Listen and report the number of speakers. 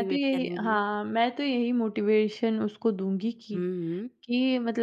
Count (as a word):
two